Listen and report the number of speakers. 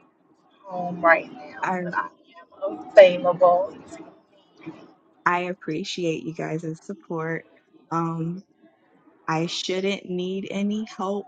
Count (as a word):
two